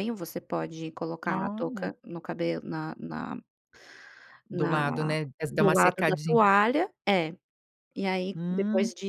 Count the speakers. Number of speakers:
2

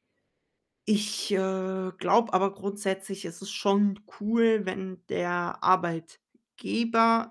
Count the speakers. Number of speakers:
1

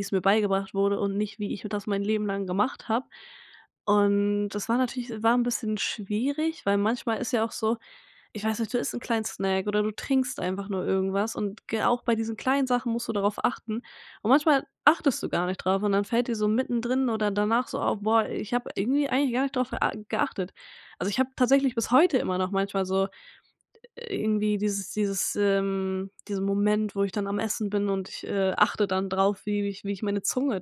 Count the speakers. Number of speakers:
1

